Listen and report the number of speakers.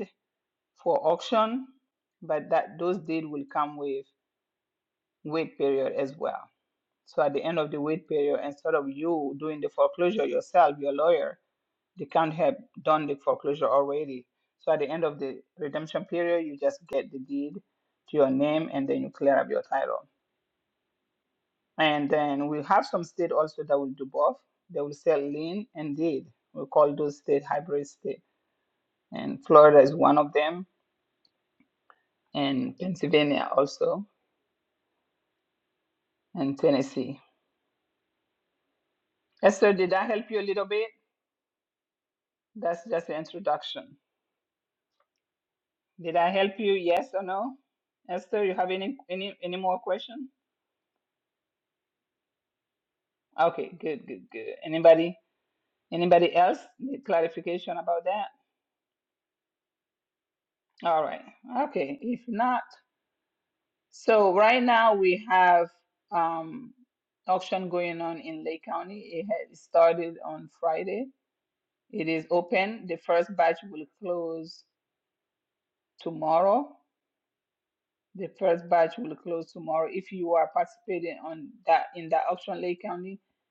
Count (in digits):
1